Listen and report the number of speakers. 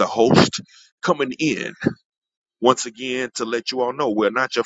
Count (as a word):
one